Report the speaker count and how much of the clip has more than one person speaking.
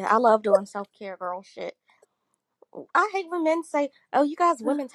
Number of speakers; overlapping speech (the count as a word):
one, no overlap